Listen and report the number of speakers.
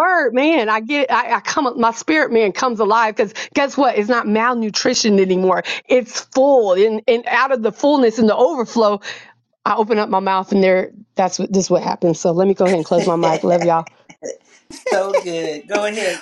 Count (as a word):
two